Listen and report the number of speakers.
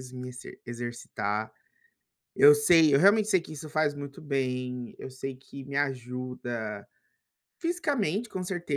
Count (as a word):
one